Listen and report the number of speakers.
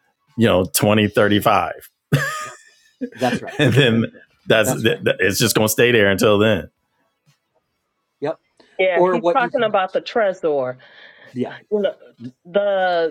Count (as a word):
three